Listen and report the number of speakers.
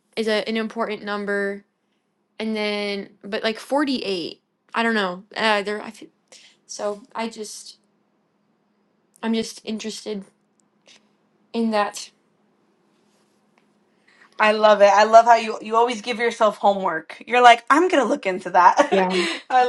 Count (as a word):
two